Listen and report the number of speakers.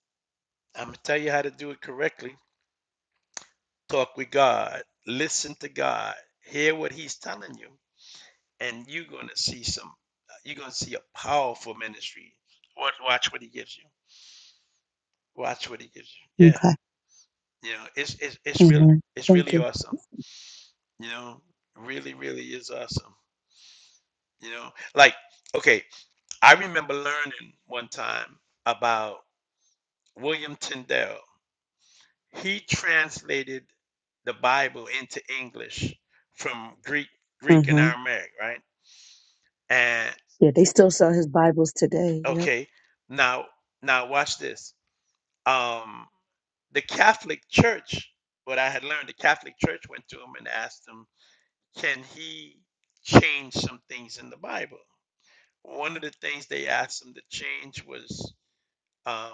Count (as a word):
two